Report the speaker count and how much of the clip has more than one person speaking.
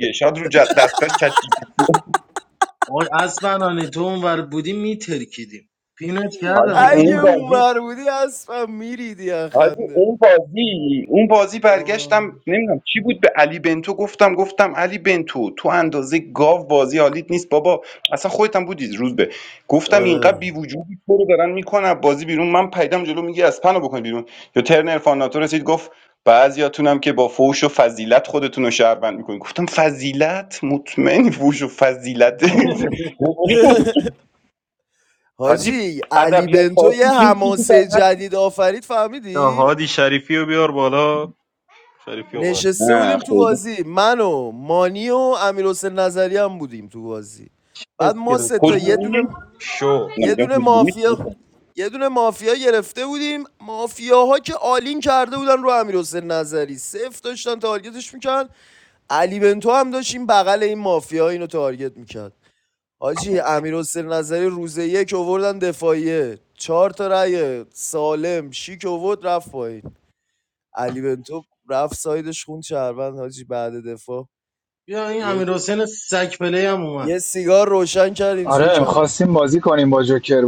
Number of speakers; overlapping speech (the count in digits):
5, about 11%